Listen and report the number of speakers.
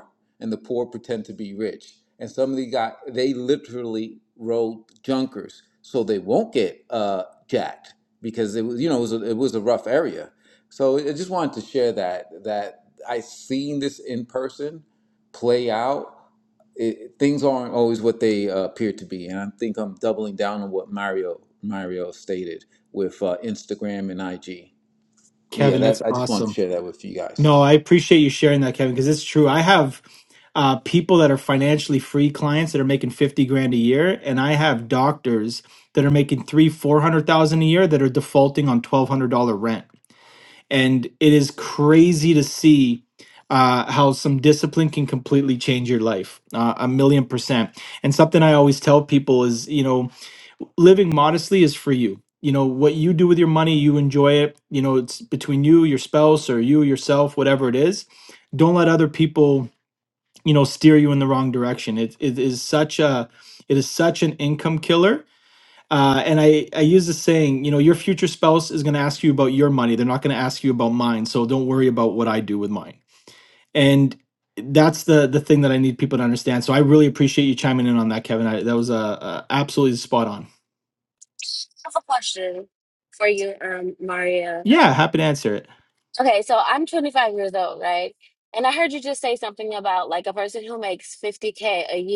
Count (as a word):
three